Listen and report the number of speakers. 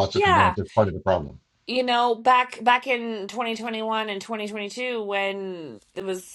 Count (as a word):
two